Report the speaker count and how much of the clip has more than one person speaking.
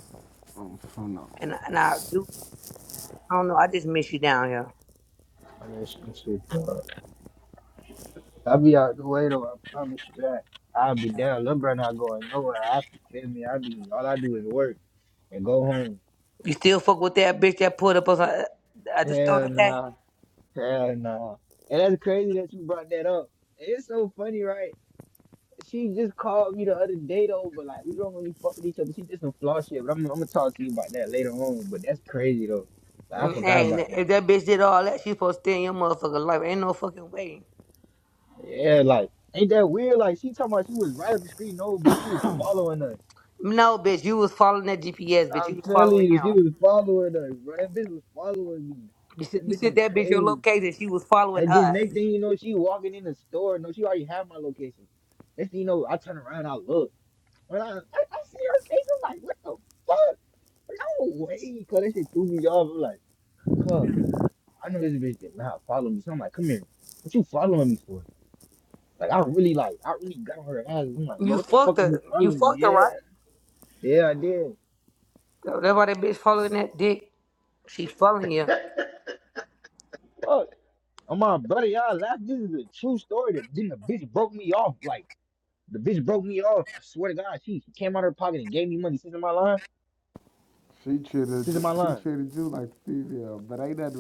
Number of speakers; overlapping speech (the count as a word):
three, about 7%